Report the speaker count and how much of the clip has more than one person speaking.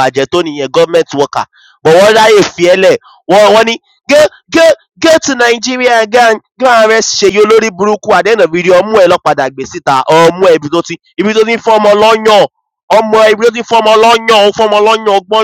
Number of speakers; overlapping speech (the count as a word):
one, no overlap